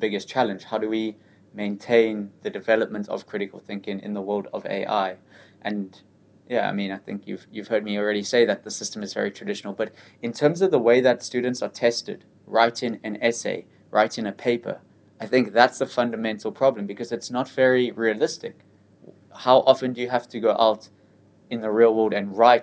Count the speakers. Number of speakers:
1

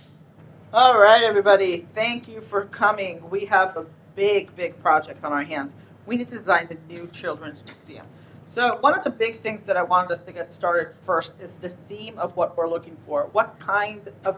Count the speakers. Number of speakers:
1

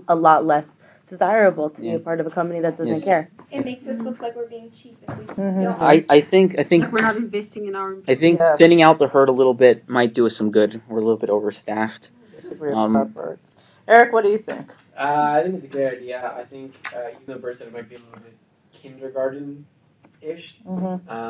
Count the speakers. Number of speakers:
6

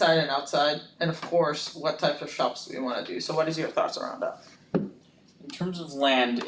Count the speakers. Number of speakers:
2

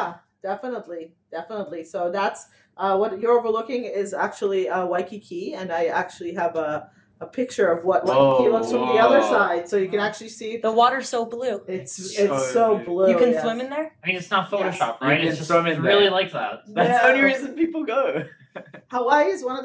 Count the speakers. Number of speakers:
4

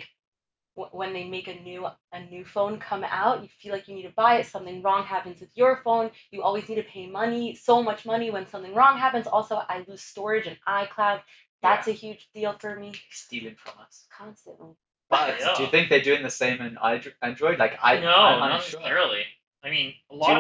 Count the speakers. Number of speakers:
3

